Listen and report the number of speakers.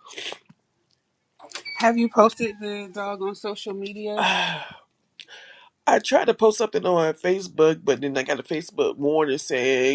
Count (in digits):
2